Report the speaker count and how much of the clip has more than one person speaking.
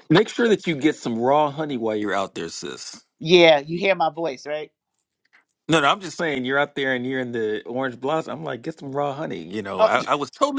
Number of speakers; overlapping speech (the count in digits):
2, about 1%